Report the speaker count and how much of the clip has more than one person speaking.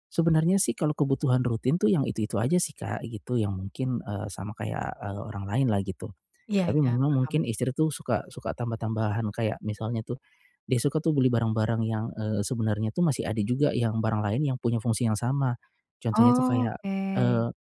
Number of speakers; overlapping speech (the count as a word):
two, about 8%